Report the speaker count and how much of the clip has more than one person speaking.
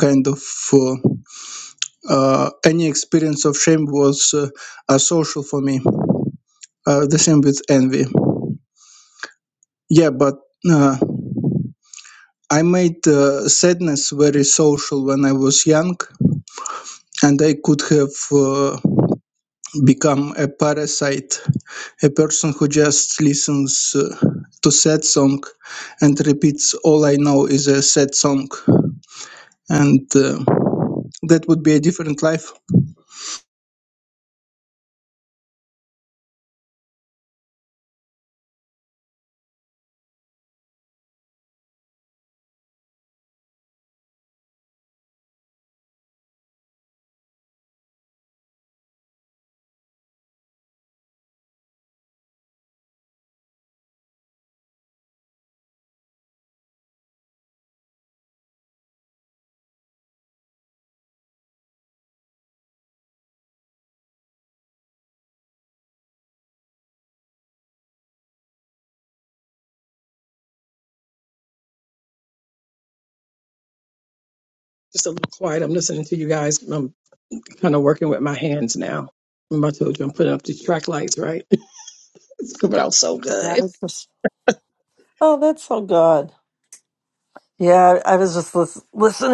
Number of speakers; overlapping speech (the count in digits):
3, under 1%